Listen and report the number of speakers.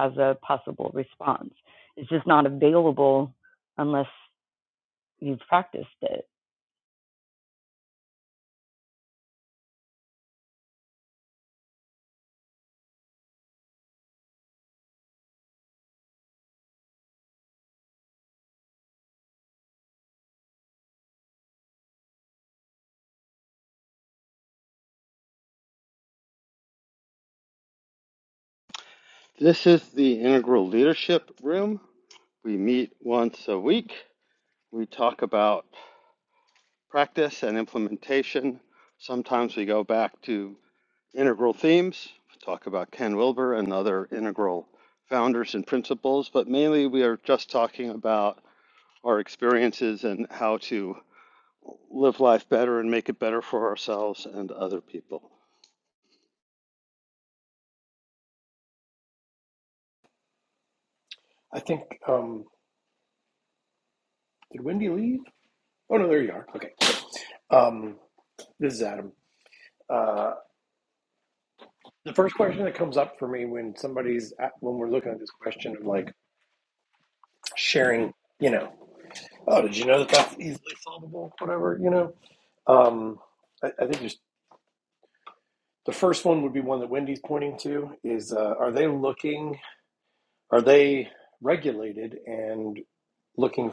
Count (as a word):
three